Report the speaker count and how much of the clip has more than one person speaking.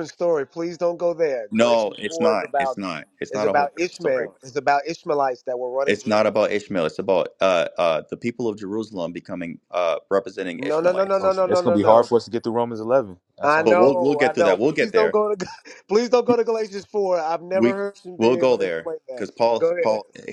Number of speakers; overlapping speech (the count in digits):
3, about 34%